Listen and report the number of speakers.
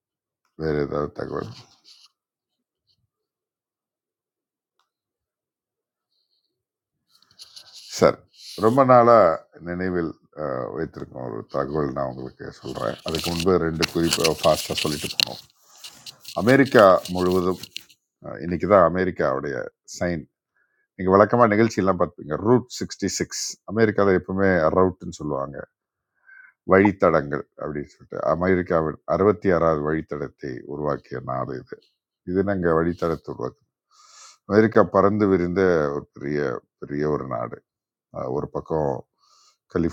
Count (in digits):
1